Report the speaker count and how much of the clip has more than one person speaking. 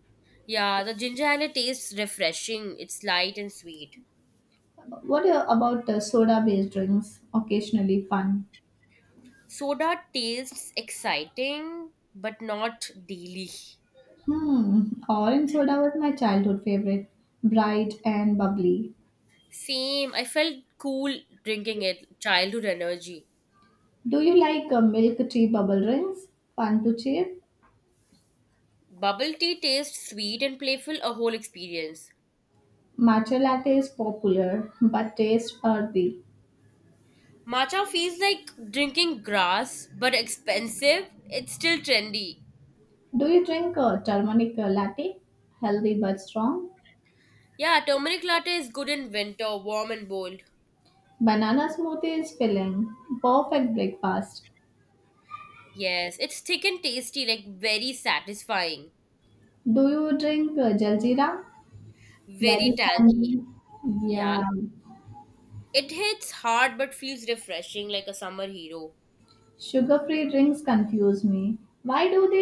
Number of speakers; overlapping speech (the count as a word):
two, about 2%